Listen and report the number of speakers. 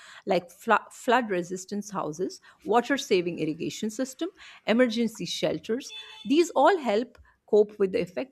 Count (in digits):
1